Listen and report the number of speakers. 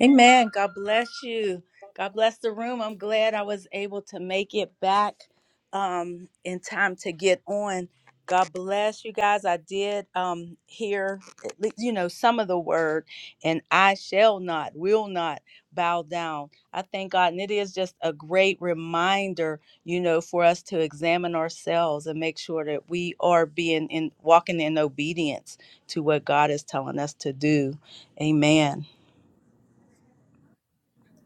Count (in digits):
1